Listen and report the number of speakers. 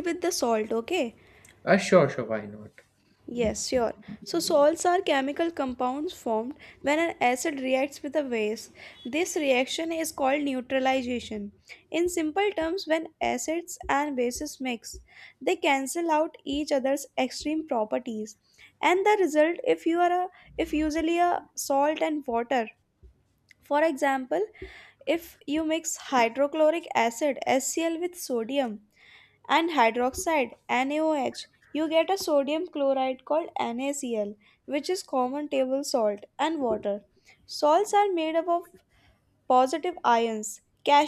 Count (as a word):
two